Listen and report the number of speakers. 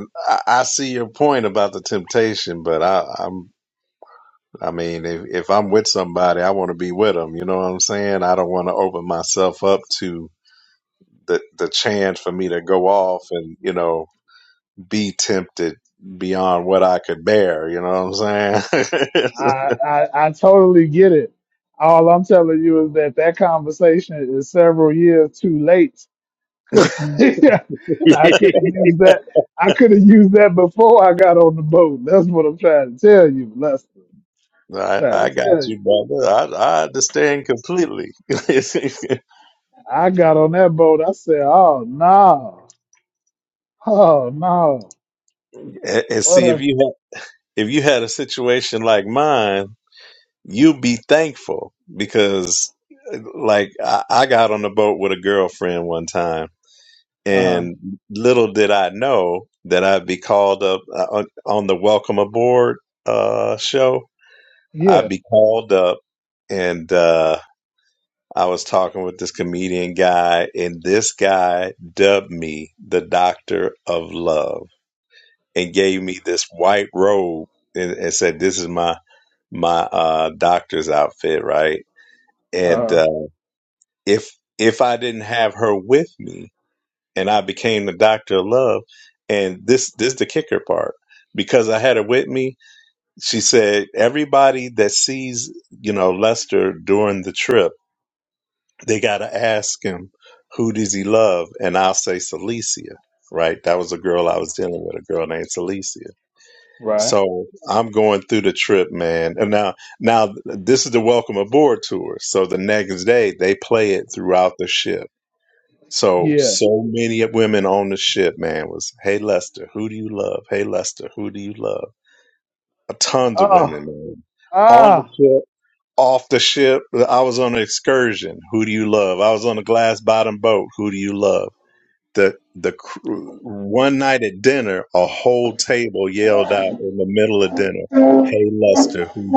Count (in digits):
2